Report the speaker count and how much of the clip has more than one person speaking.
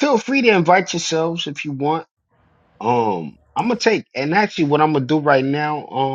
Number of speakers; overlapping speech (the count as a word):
one, no overlap